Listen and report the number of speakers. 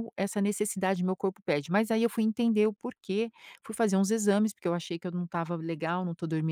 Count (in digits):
1